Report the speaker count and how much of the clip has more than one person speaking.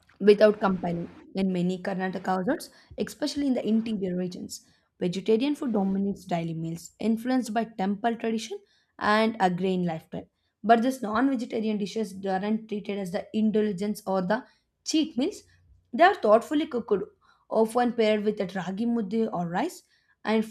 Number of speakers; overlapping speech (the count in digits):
1, no overlap